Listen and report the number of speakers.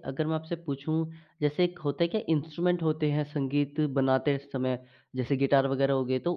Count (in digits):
1